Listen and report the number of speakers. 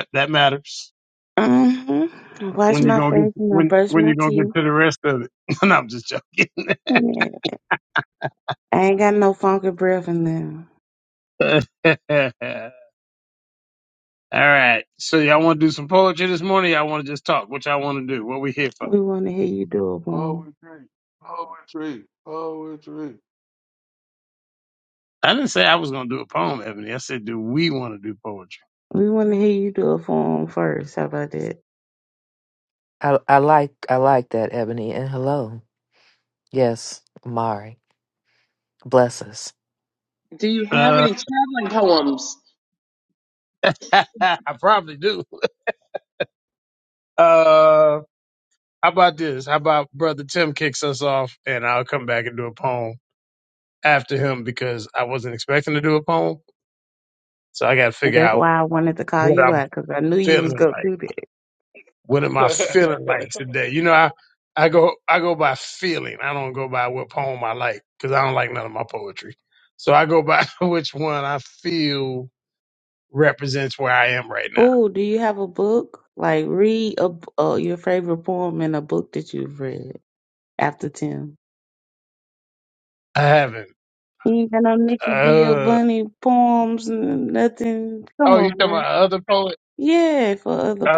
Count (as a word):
five